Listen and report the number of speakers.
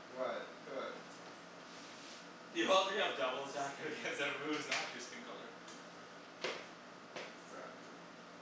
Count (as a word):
two